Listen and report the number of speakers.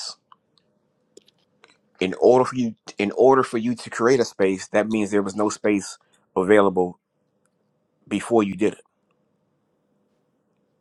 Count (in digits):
1